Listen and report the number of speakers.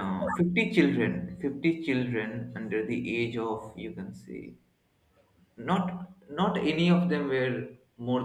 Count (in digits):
1